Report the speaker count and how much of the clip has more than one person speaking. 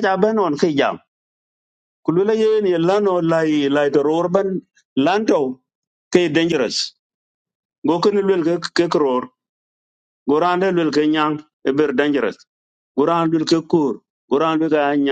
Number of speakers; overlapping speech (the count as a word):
one, no overlap